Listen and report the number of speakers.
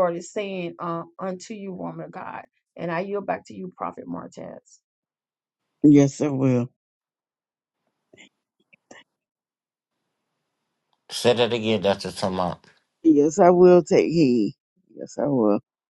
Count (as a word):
three